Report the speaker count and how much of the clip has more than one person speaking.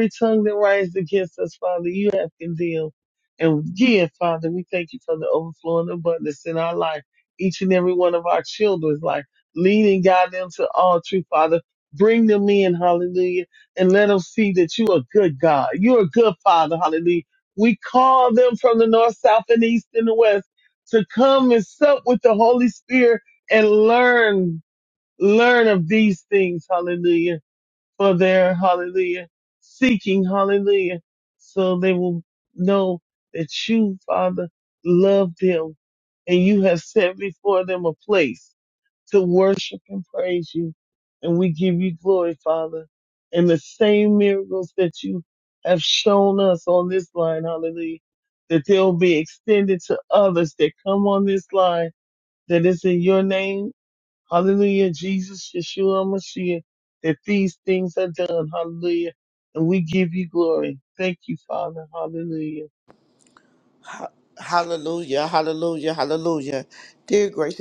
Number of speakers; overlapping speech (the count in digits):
2, no overlap